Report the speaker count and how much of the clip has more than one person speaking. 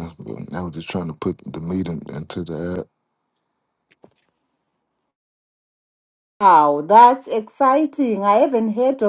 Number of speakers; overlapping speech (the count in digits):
2, no overlap